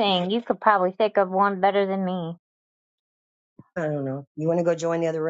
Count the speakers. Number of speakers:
2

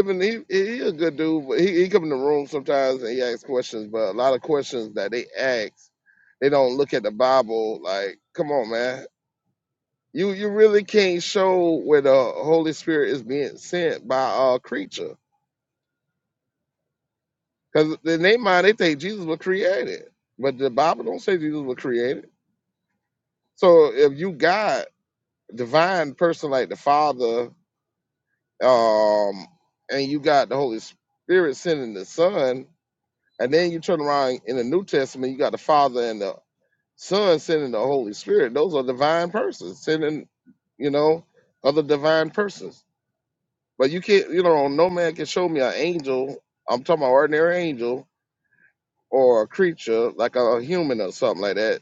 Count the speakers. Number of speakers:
1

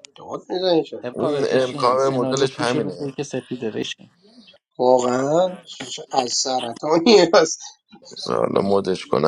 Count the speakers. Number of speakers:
3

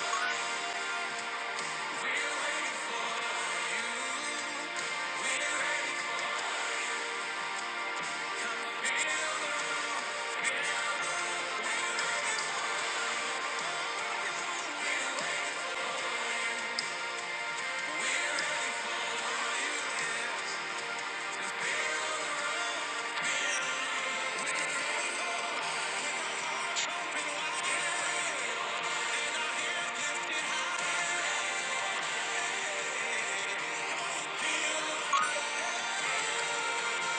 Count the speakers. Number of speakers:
0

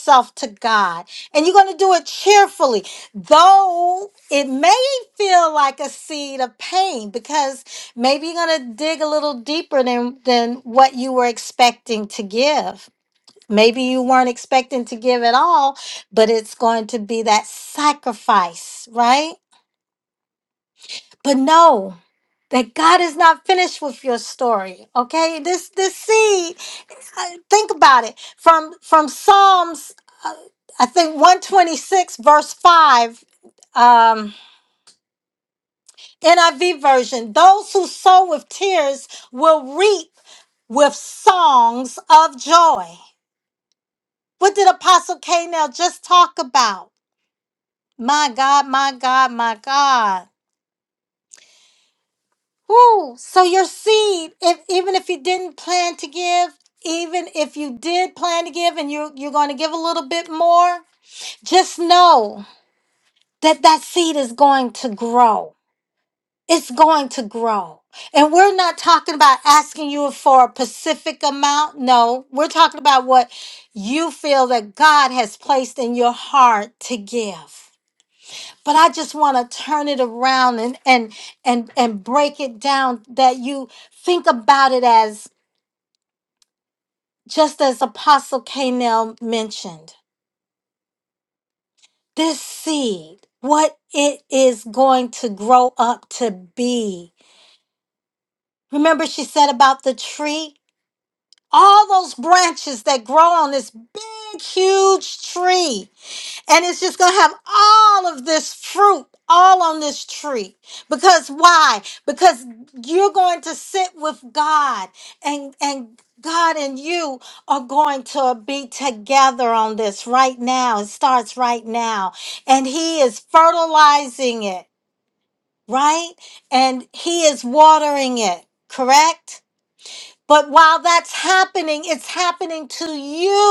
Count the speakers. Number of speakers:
1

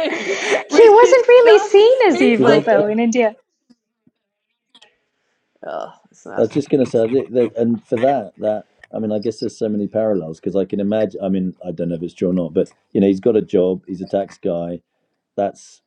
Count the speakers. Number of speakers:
3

